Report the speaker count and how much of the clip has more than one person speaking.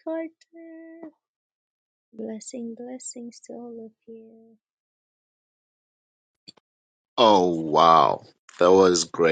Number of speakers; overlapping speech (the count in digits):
2, no overlap